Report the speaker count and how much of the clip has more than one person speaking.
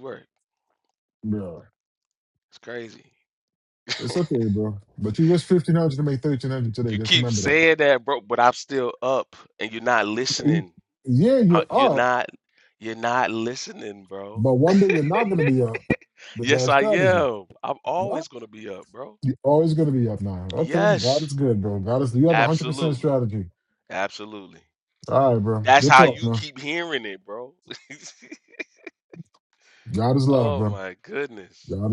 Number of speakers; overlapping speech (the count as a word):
two, about 17%